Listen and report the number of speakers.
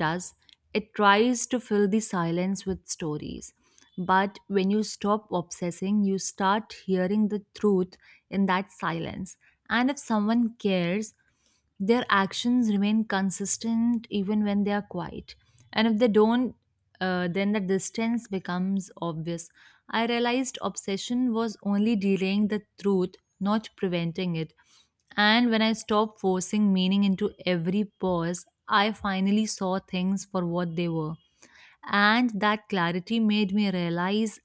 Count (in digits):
1